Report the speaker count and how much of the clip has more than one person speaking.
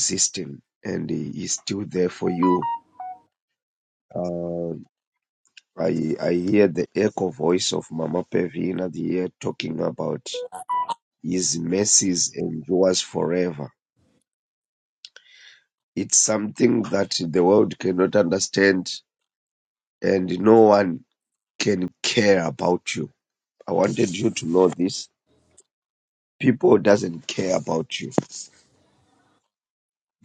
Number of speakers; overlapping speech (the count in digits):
1, no overlap